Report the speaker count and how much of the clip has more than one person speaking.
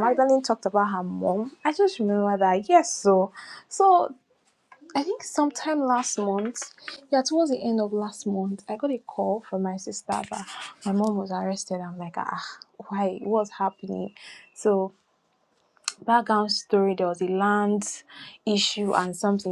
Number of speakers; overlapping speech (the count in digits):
1, no overlap